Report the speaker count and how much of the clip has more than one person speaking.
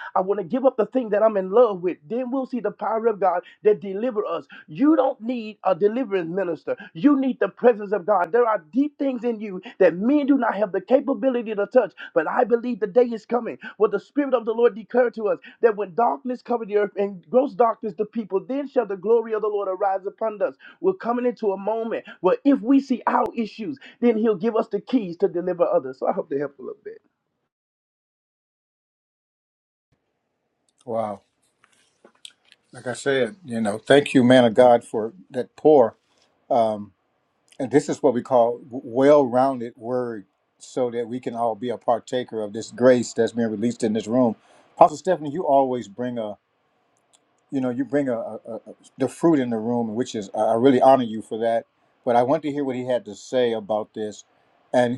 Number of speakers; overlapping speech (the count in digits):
2, no overlap